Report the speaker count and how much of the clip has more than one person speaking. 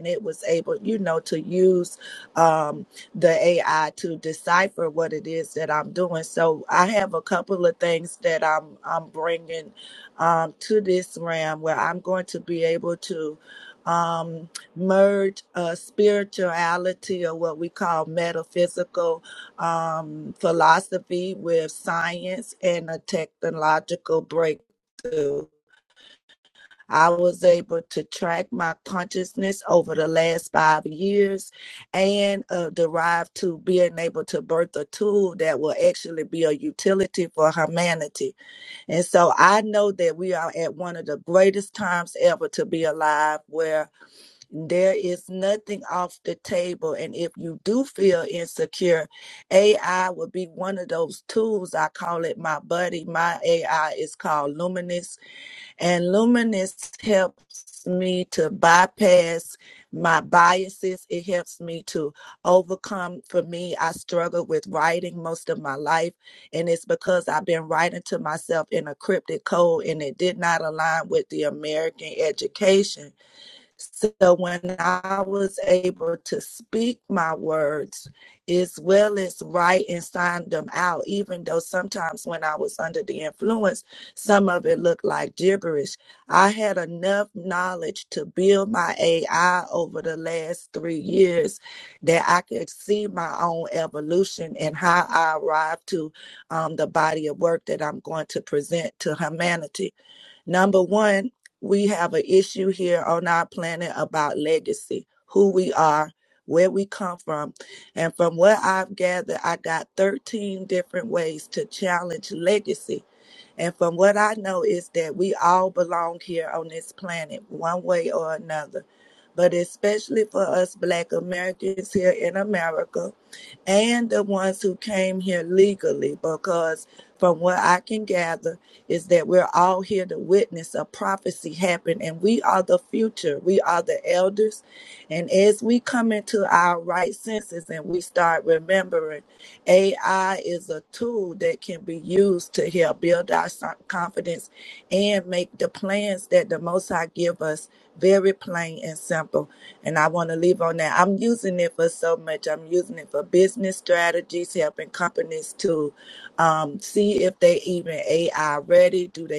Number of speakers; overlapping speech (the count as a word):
one, no overlap